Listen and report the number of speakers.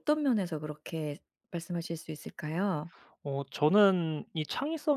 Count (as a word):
two